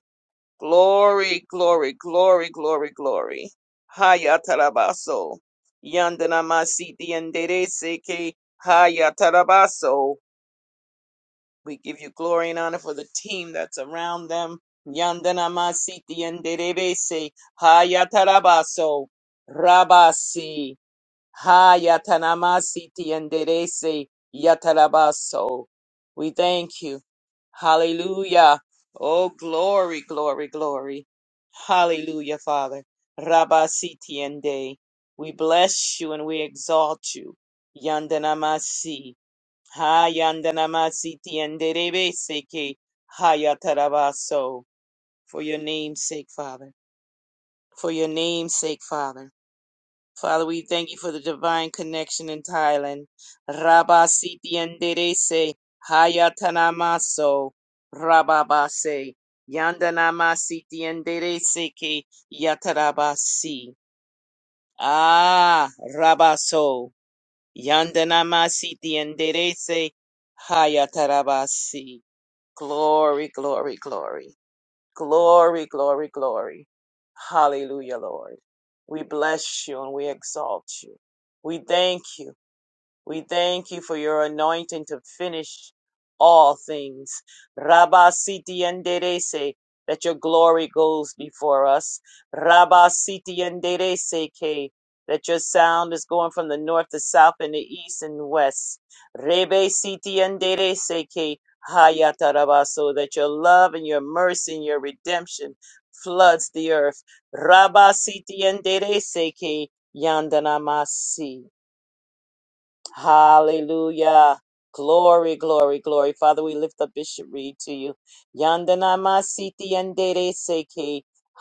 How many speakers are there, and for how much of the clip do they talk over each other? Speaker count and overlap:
1, no overlap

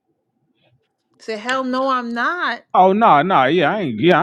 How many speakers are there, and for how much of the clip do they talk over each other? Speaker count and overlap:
2, no overlap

